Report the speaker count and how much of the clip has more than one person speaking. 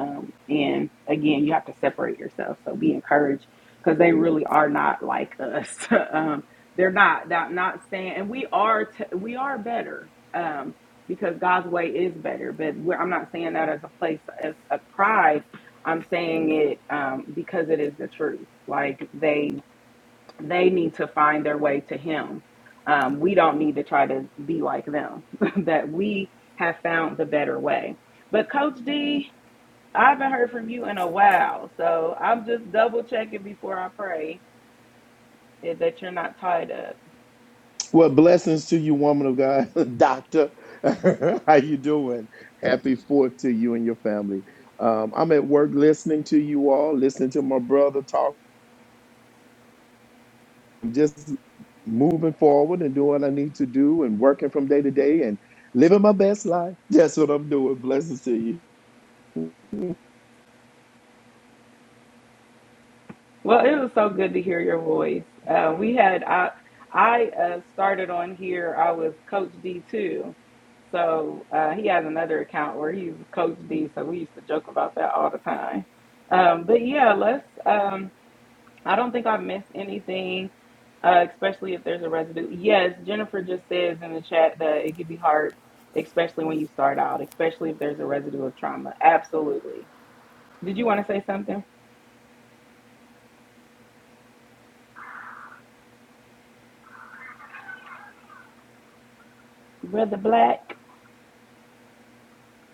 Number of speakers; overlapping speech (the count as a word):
two, no overlap